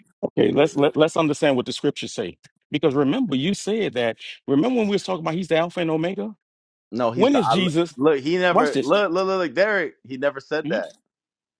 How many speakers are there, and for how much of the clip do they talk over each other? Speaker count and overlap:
2, about 8%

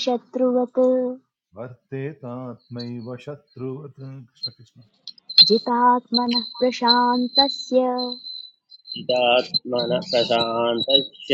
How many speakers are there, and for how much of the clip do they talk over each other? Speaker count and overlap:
3, no overlap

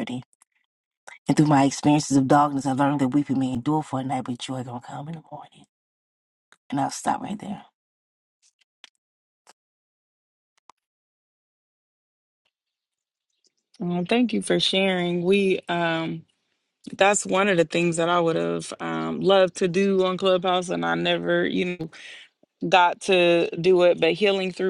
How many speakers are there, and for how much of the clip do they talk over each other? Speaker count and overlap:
2, no overlap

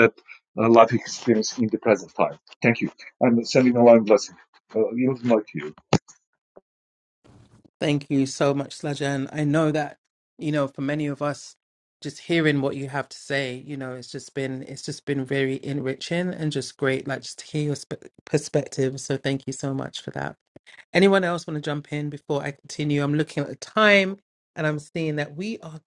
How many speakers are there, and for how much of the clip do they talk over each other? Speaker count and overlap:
2, no overlap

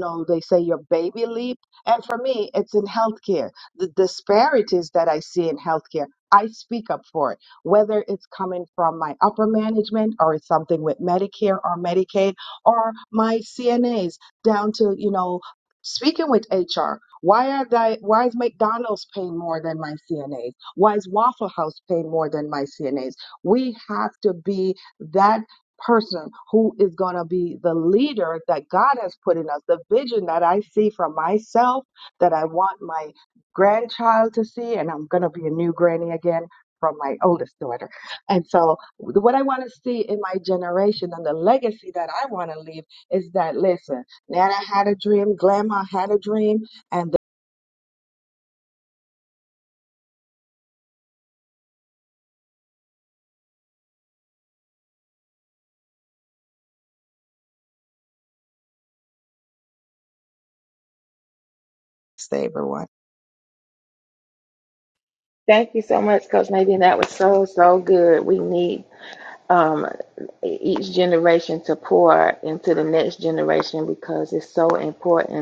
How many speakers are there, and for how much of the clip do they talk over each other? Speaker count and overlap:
2, no overlap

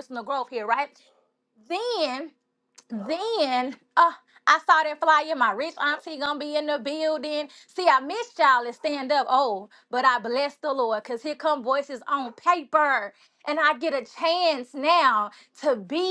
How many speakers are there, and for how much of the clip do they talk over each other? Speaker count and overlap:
1, no overlap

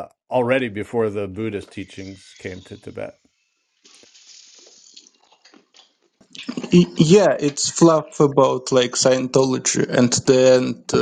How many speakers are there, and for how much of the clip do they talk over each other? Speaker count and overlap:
2, no overlap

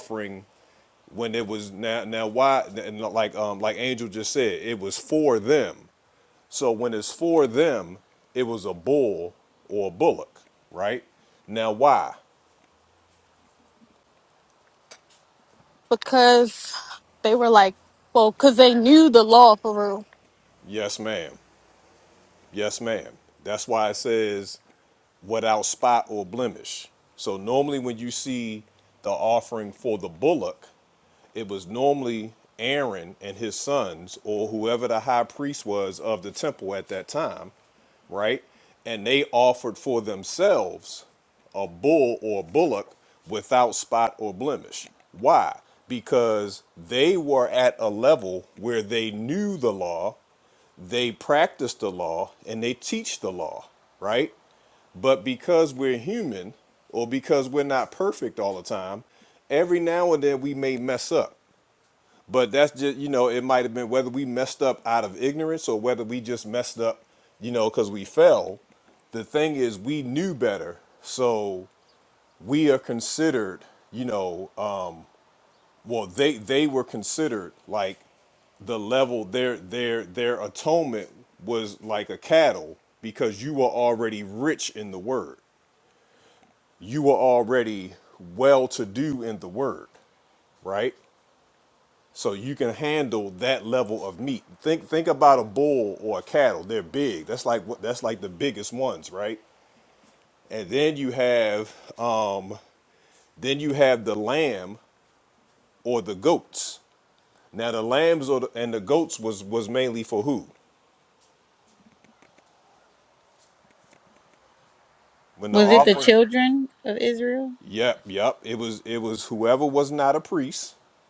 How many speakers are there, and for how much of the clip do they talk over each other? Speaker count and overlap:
3, under 1%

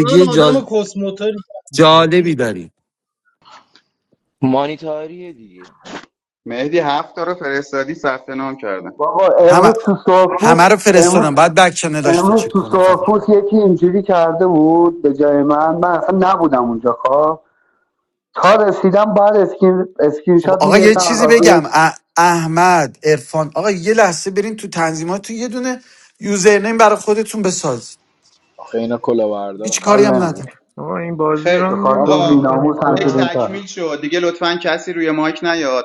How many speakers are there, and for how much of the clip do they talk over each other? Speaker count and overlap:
7, about 20%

